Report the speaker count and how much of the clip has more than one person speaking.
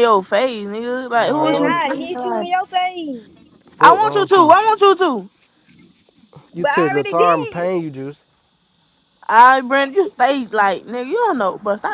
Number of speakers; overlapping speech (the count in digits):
3, about 26%